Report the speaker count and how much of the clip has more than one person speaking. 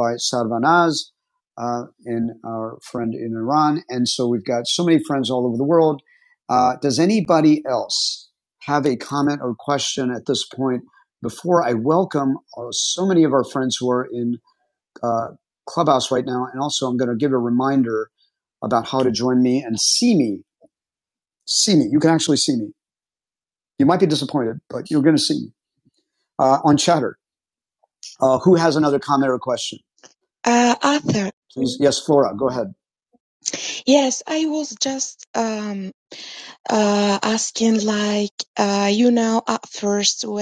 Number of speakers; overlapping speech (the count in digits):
2, no overlap